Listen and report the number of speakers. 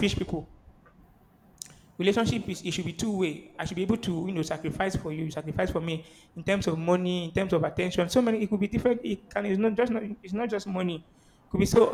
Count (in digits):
1